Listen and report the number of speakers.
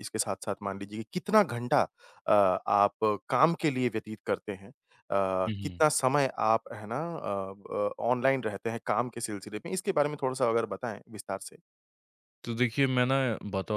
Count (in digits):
2